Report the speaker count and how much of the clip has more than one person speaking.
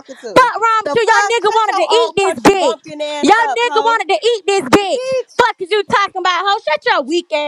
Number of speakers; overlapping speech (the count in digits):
2, about 39%